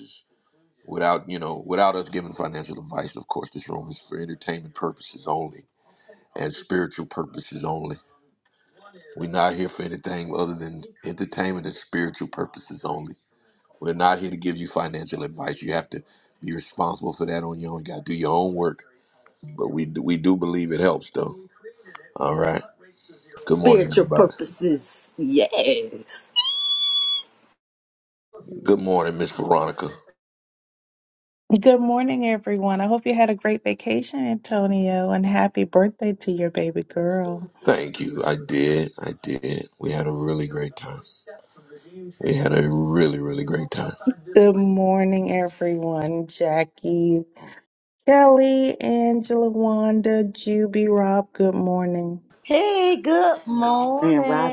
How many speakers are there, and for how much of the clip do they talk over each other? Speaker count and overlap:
4, about 2%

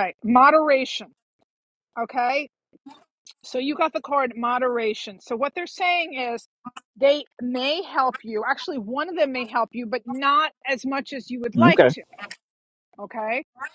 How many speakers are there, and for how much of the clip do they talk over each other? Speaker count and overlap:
1, no overlap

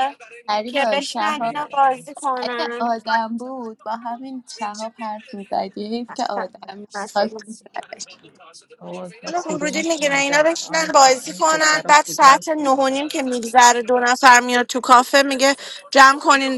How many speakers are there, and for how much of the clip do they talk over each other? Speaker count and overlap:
3, about 33%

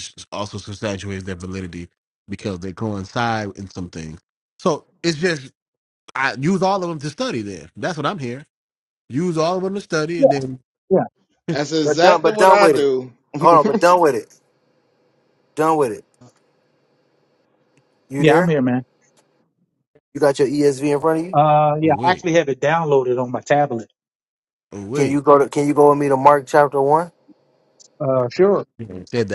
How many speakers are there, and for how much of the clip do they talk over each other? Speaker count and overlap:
4, about 9%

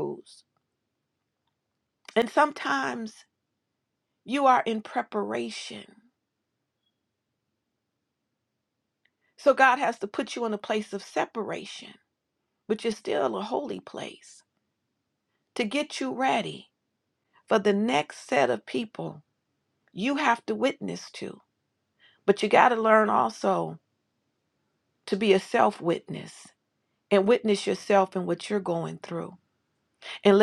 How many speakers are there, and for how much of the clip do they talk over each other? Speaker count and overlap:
1, no overlap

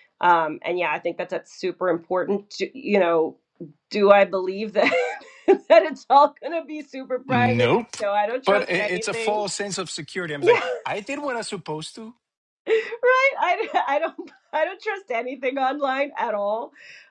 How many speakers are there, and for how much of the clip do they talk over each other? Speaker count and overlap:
2, about 8%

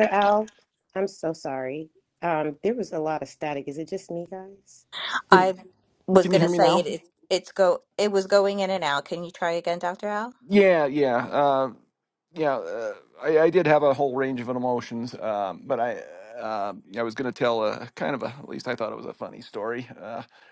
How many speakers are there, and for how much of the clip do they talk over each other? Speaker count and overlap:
3, about 3%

